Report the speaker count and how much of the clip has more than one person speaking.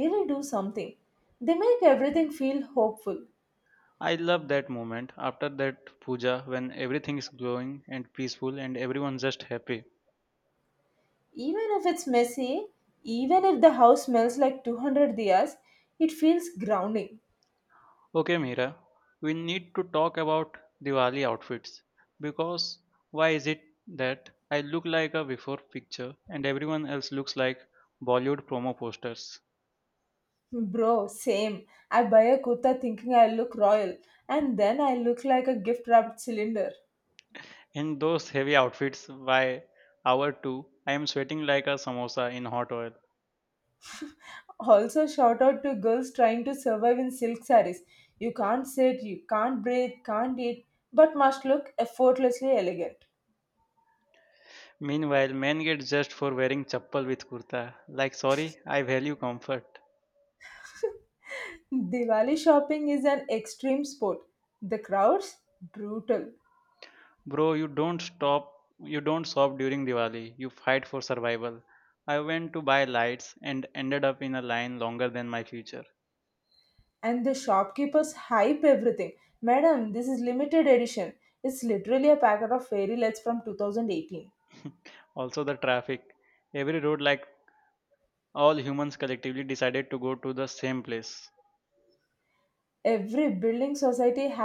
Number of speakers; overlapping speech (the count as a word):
two, no overlap